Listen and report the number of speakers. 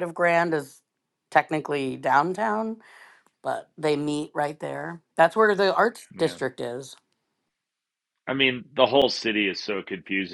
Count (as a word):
two